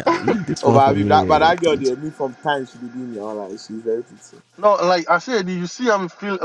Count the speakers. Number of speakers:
three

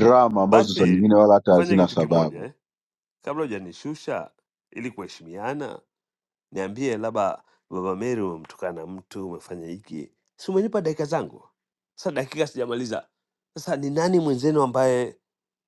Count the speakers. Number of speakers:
two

